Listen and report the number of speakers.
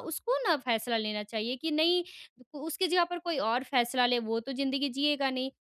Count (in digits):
1